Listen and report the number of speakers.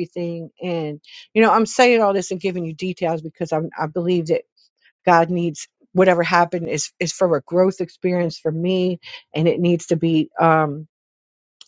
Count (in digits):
1